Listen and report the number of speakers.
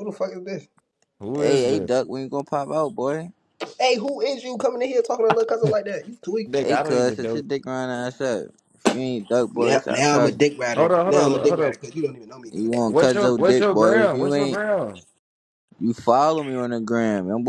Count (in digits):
3